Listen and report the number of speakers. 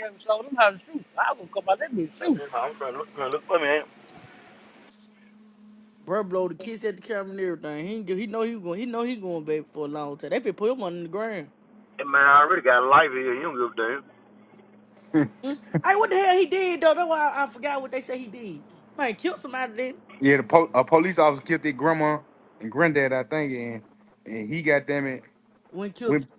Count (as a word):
four